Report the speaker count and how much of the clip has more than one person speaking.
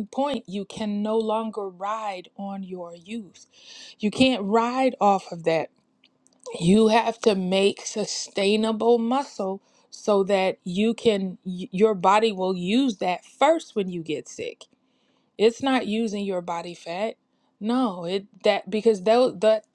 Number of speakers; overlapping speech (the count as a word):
one, no overlap